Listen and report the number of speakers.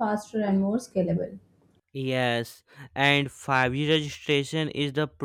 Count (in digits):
2